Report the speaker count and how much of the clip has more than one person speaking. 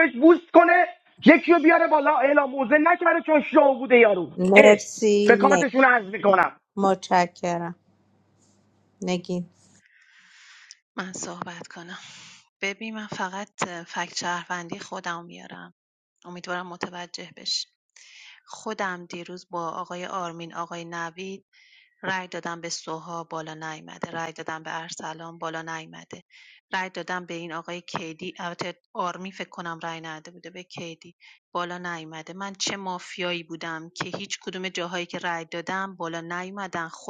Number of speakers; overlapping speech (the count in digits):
3, about 2%